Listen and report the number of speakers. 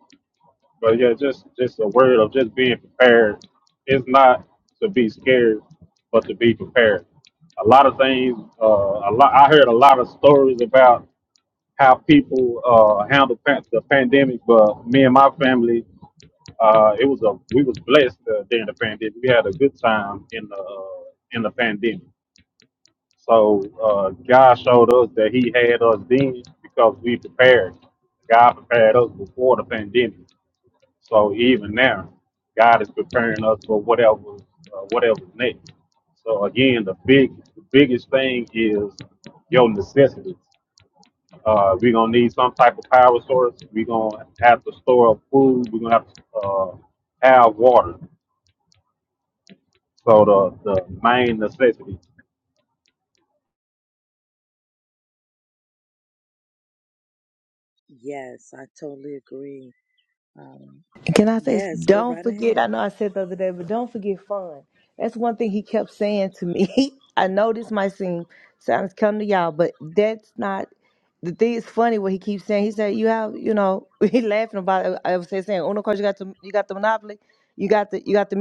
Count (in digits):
3